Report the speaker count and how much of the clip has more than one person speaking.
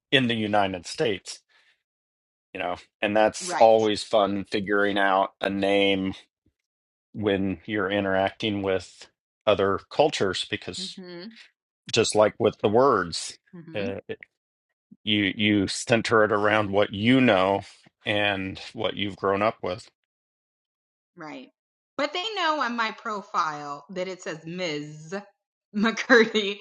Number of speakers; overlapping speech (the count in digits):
2, about 2%